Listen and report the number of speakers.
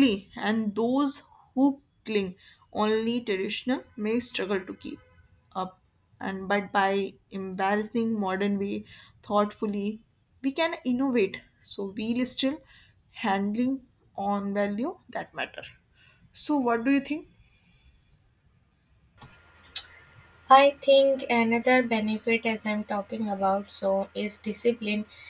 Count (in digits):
2